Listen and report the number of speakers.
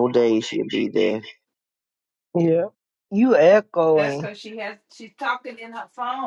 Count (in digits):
3